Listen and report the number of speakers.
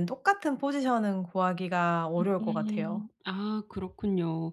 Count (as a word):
two